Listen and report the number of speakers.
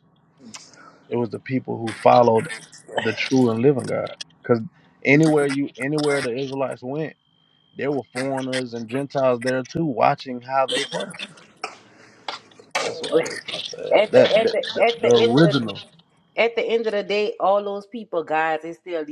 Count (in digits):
2